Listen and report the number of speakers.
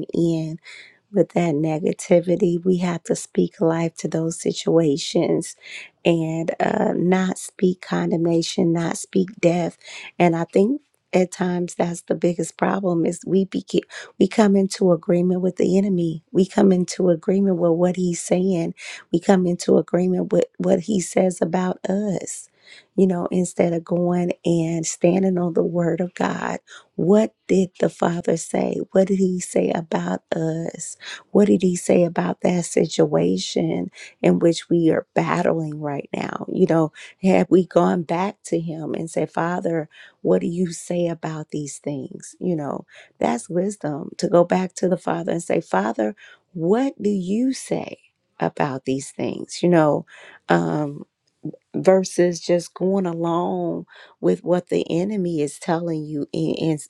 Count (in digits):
1